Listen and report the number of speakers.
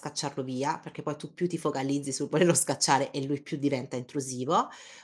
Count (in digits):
1